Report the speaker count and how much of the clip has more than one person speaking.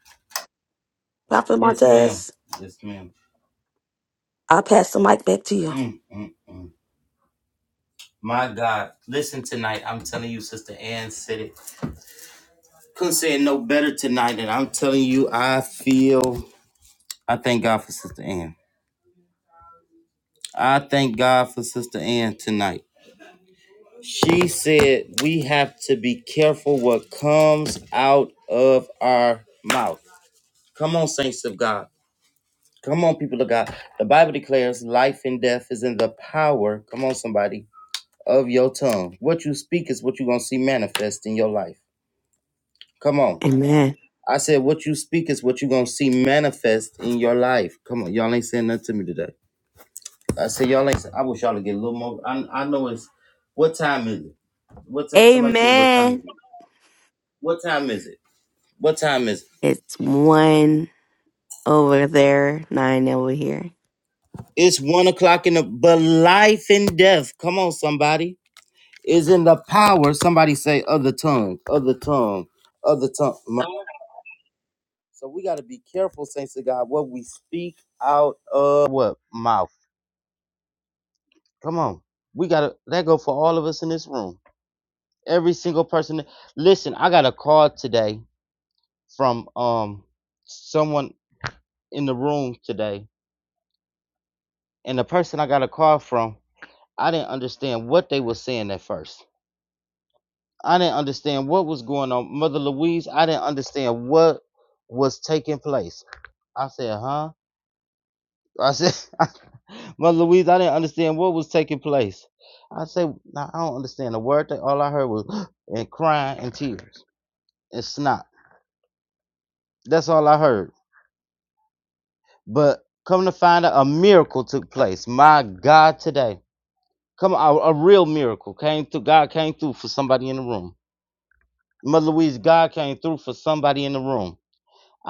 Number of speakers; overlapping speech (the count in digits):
3, about 1%